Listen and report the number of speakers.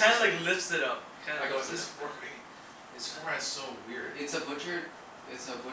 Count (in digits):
3